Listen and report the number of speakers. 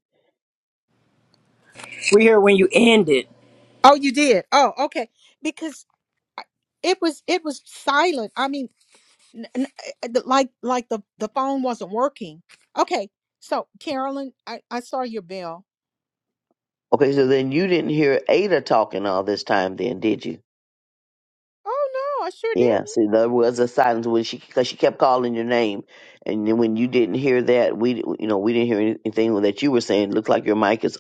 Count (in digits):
3